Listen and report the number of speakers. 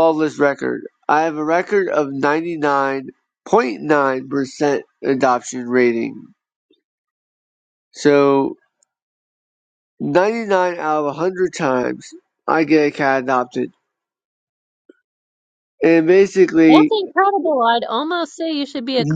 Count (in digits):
2